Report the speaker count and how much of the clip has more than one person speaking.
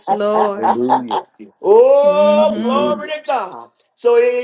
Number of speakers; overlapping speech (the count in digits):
3, about 29%